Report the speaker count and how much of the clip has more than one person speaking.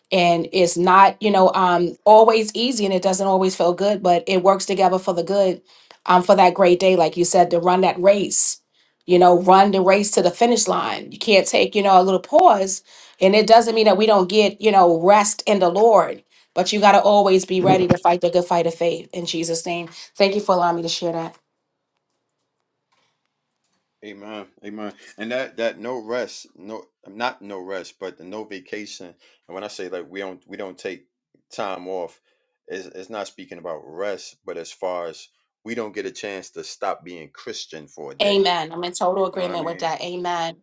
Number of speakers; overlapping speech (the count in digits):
2, about 2%